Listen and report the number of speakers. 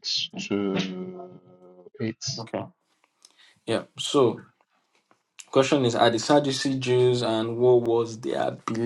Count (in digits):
2